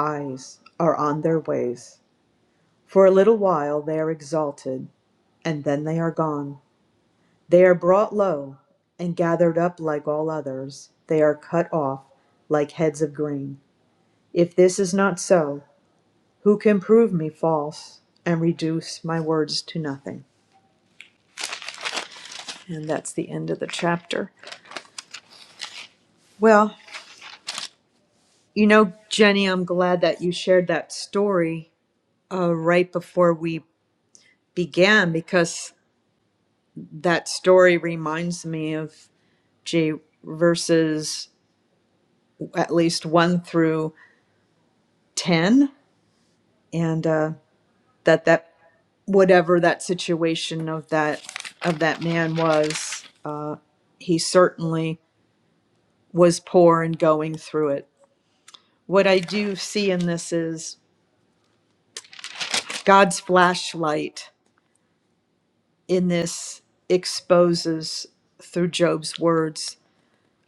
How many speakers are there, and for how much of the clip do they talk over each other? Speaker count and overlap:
one, no overlap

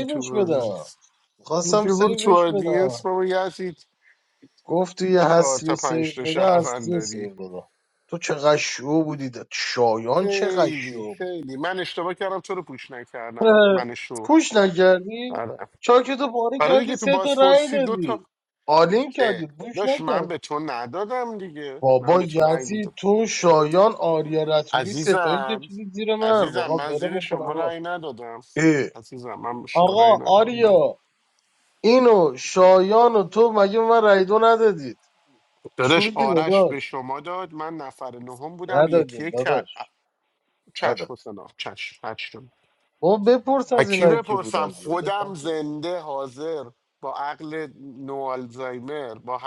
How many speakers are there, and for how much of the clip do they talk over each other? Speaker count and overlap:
two, about 33%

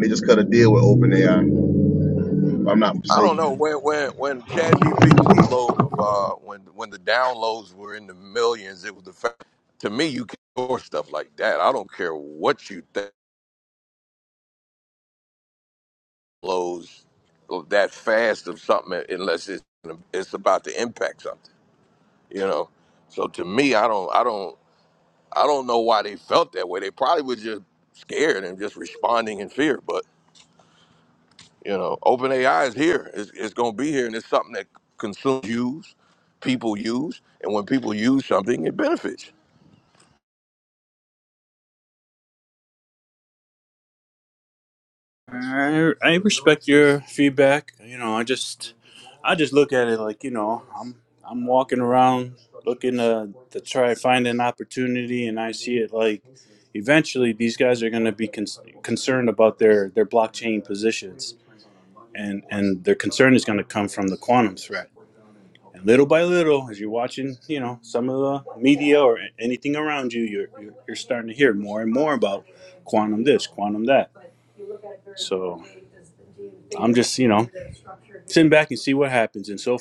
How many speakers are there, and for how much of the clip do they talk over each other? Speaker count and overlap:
three, under 1%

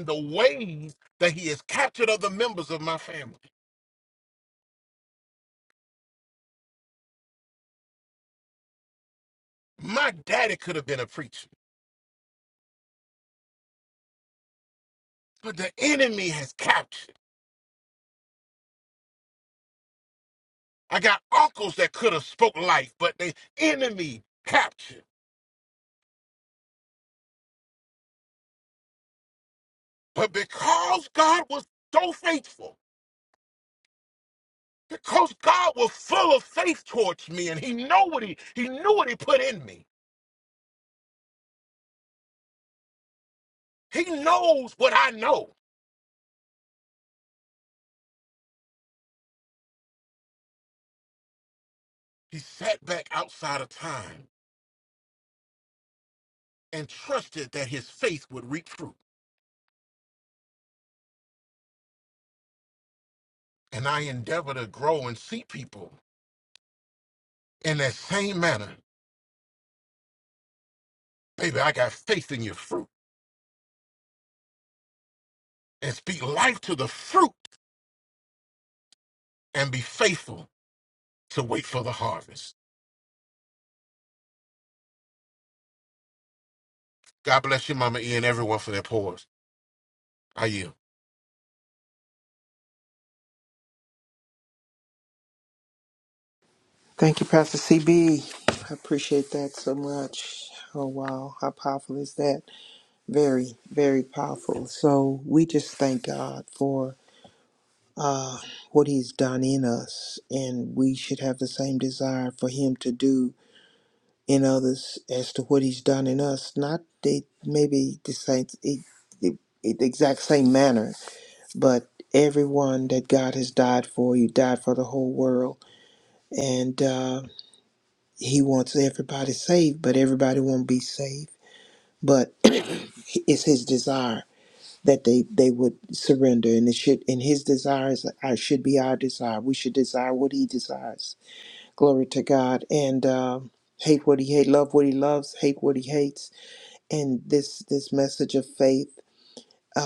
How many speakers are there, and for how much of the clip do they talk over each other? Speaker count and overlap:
two, no overlap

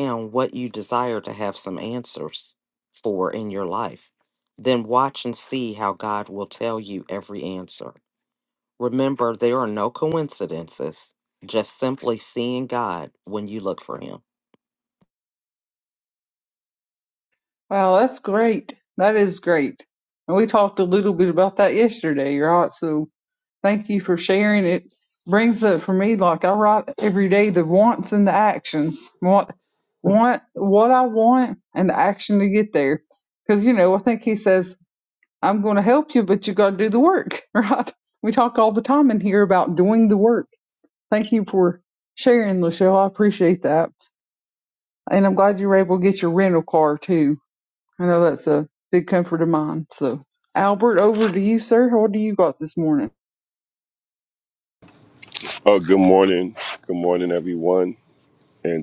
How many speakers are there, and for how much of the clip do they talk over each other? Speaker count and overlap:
three, no overlap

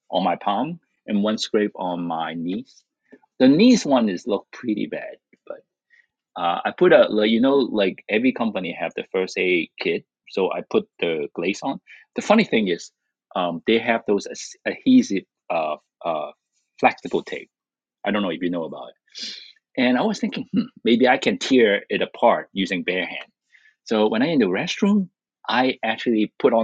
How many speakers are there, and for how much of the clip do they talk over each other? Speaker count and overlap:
one, no overlap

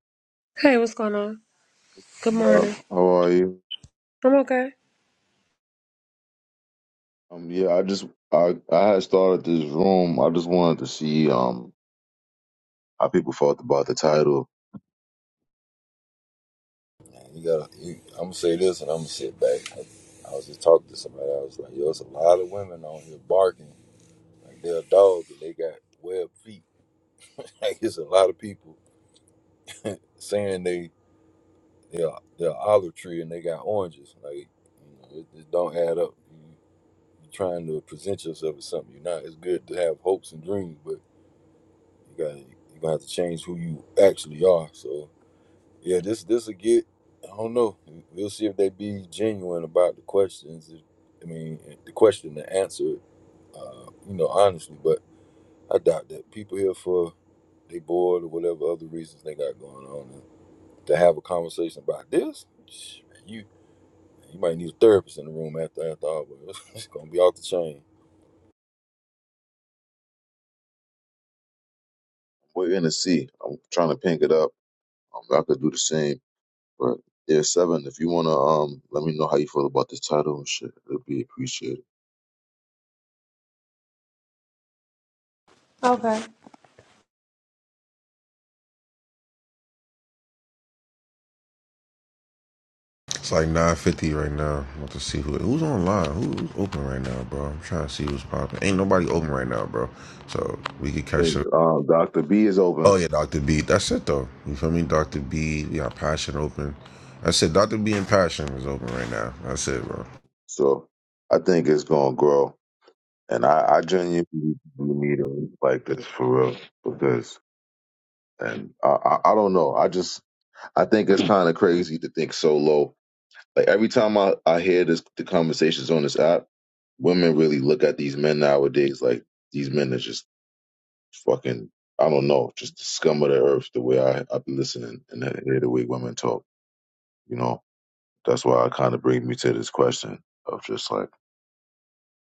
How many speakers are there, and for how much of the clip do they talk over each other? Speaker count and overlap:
four, about 1%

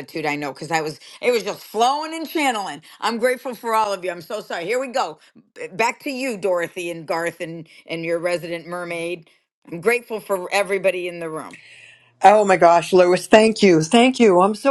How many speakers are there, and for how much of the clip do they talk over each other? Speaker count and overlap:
two, no overlap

